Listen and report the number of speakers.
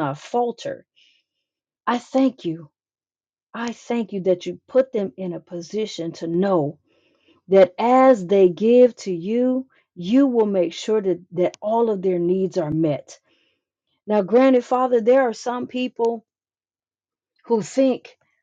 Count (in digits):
1